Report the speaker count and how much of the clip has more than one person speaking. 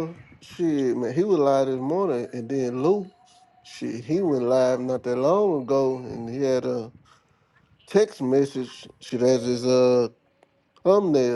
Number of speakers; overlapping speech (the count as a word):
one, no overlap